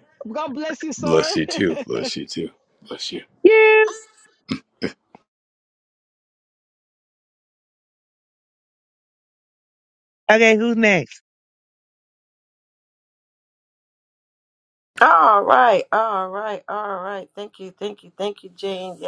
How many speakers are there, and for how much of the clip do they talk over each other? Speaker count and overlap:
4, about 2%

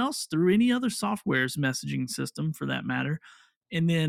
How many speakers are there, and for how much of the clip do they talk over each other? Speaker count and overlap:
1, no overlap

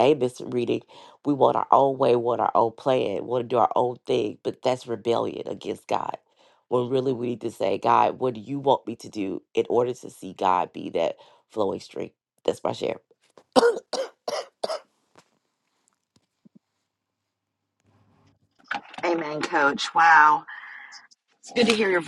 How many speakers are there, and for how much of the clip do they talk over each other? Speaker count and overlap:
2, no overlap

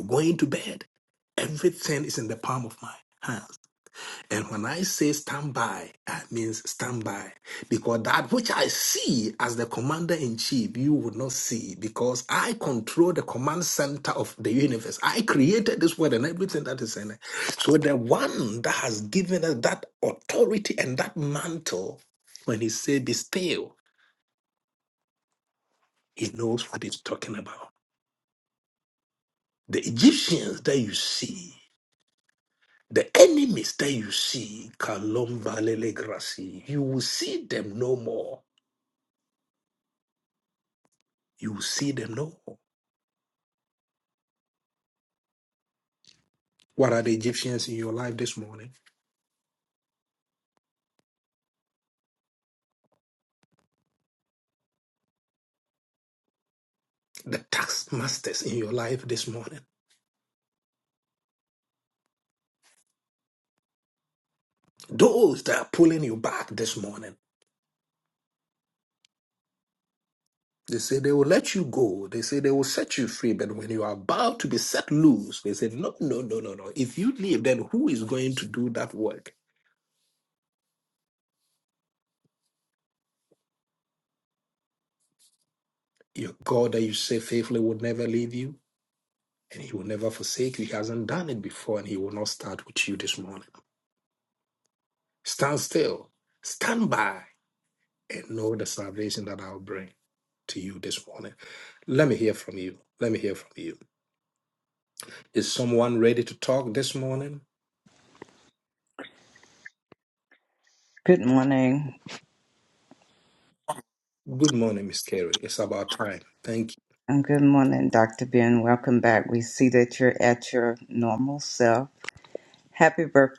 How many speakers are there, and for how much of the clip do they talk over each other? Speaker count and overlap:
2, no overlap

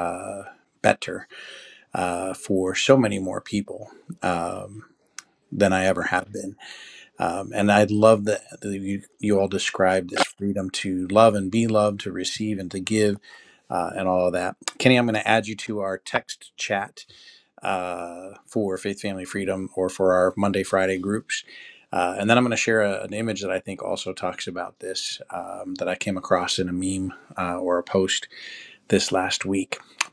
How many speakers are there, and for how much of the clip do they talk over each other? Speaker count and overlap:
1, no overlap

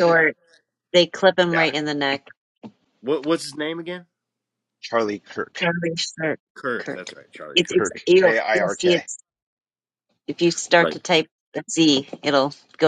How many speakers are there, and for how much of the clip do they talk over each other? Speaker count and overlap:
3, about 18%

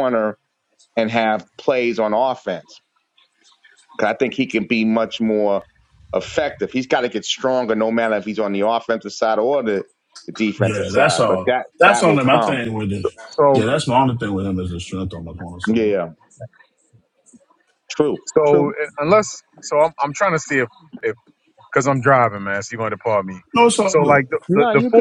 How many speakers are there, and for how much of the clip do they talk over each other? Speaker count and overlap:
3, about 13%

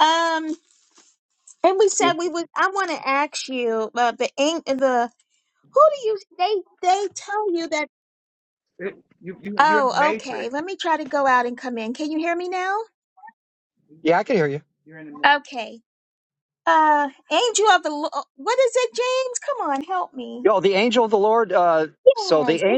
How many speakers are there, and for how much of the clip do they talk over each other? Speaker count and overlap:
3, about 7%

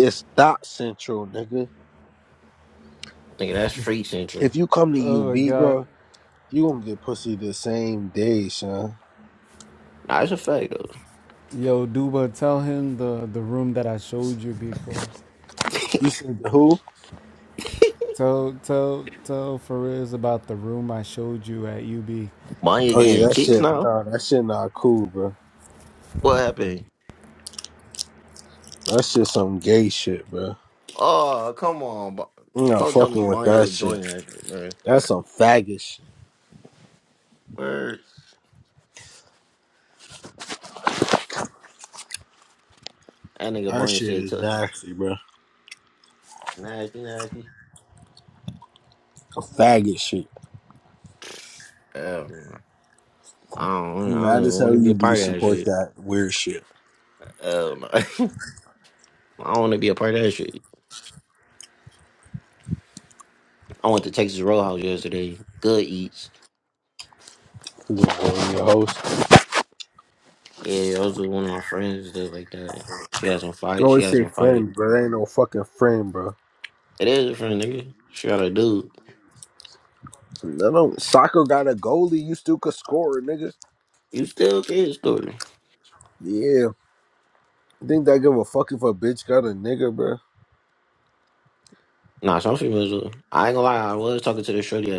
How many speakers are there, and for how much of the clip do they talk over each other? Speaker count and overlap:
3, about 7%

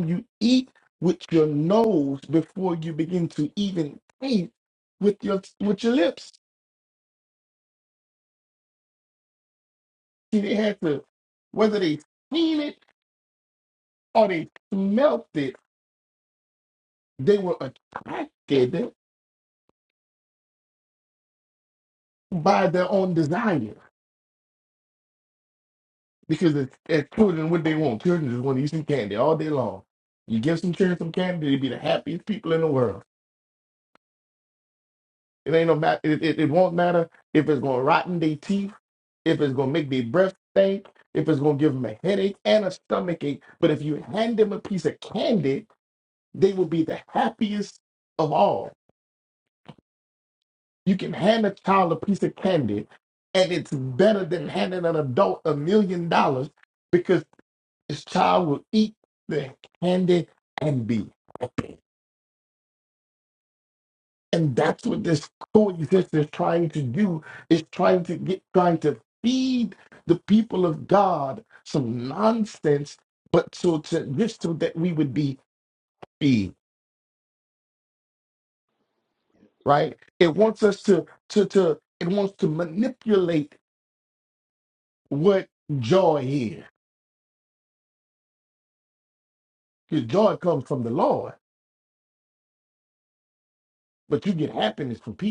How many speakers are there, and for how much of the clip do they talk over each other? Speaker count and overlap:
1, no overlap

